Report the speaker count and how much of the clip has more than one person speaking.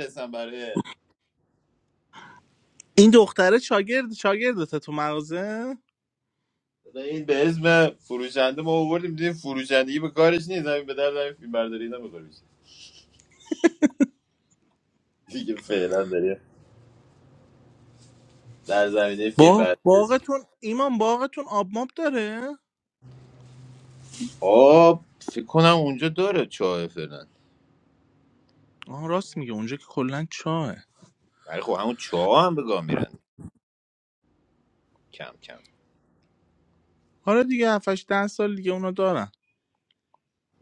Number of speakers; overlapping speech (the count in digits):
2, about 2%